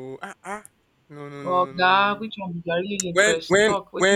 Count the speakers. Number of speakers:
two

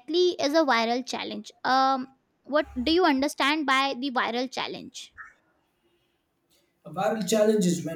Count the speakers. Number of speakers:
two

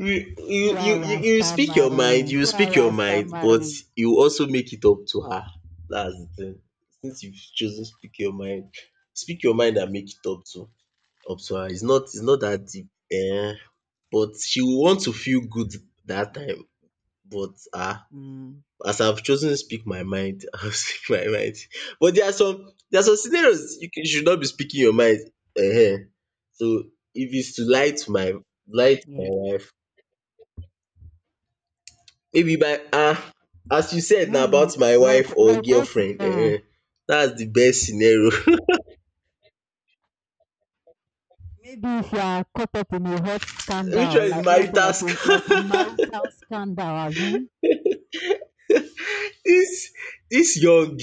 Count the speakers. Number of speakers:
two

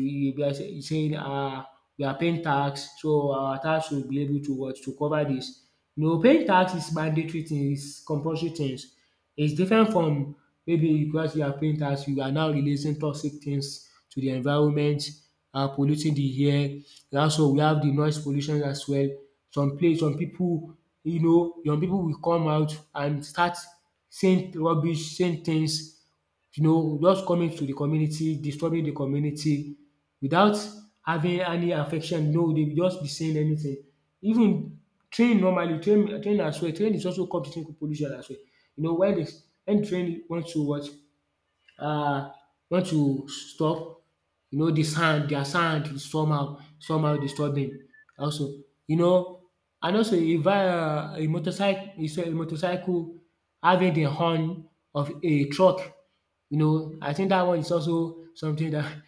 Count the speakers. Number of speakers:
one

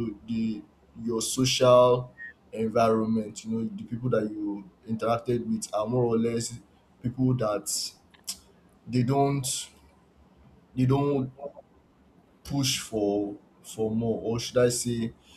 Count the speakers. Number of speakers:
one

